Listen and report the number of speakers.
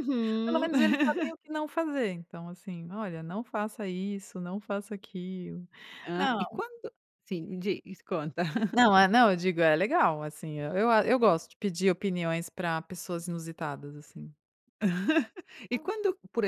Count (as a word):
two